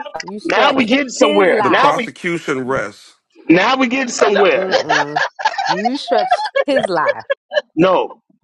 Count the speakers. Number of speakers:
3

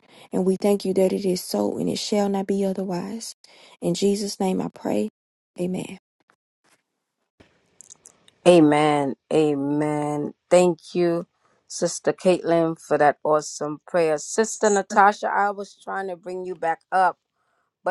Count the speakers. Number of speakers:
2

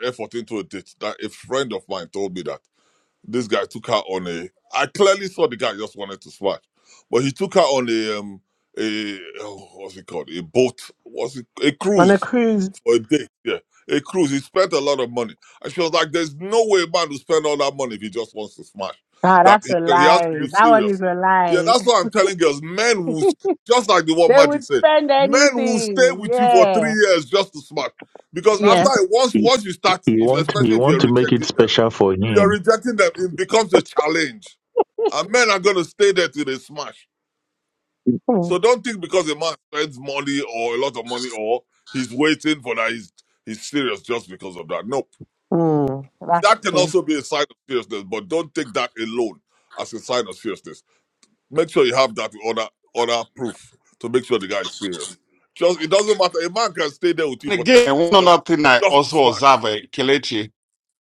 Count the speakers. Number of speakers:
4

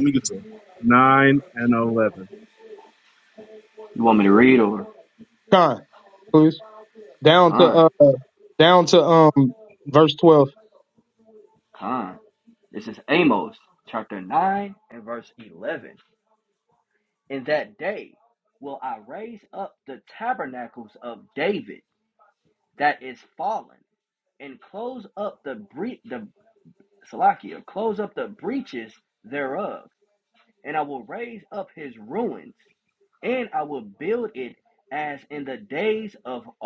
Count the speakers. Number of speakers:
3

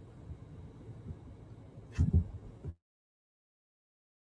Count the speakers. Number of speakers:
0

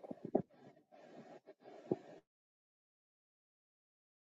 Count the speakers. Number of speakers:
0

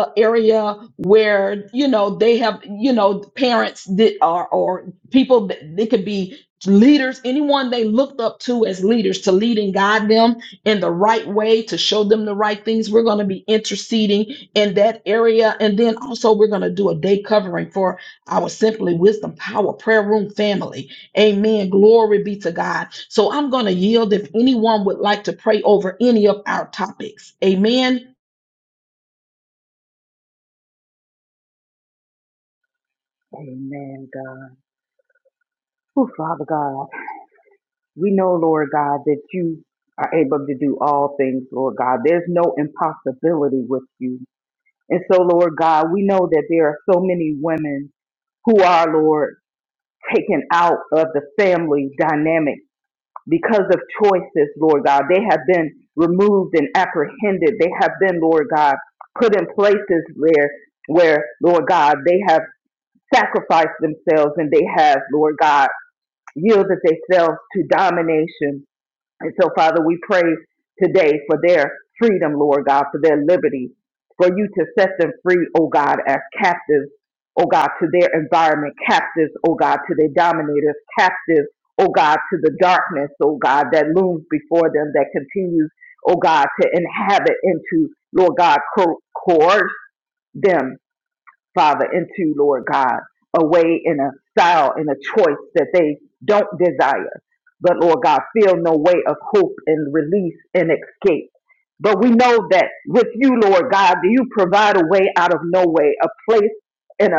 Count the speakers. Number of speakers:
2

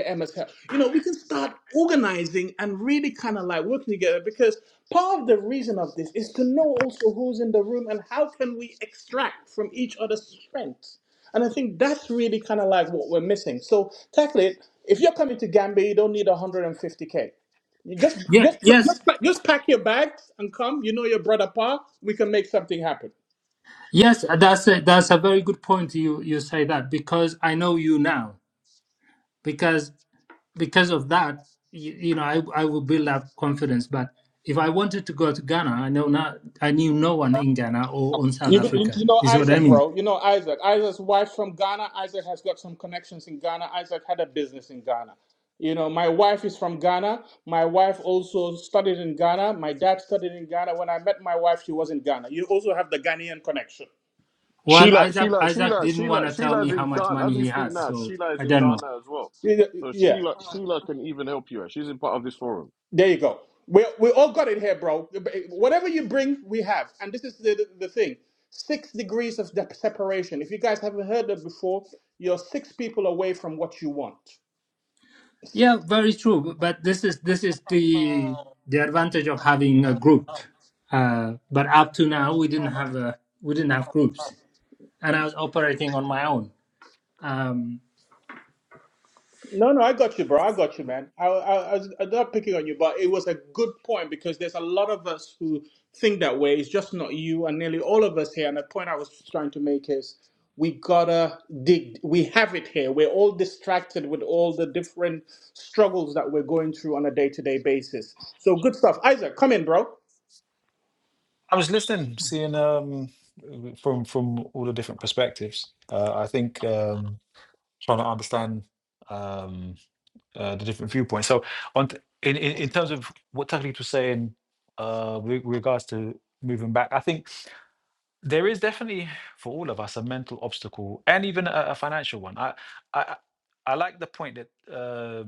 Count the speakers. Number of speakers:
4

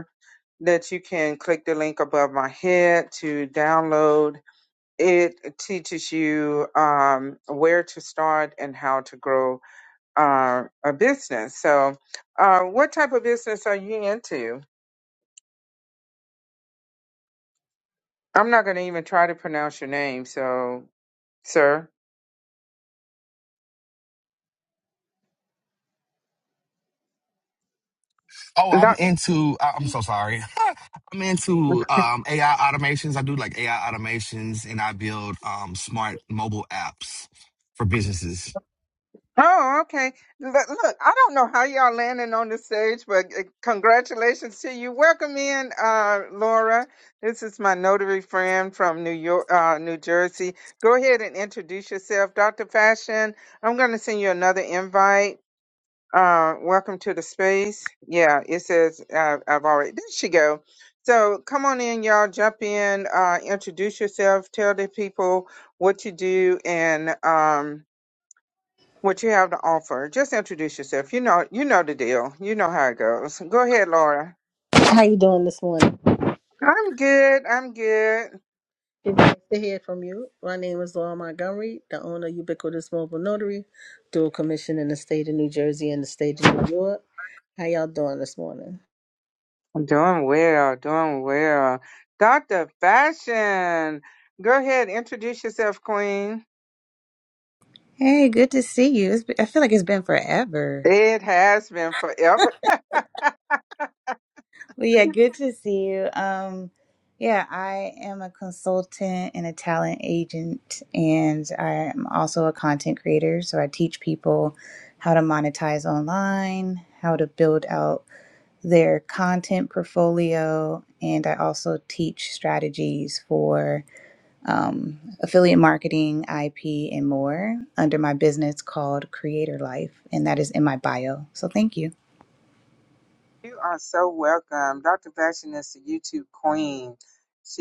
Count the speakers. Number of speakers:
4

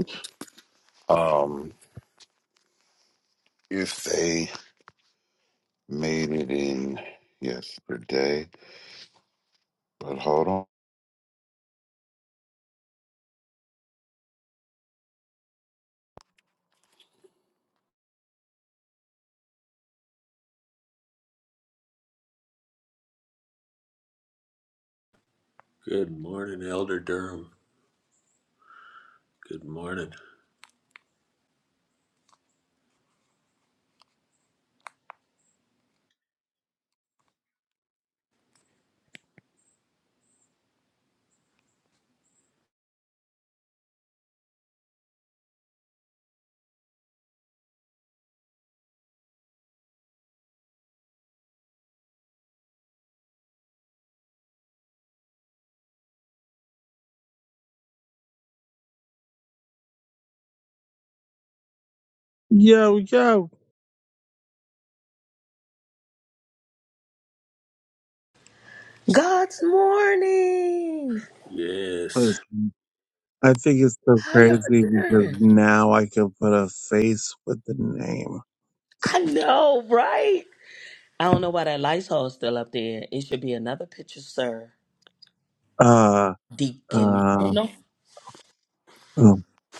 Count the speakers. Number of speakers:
4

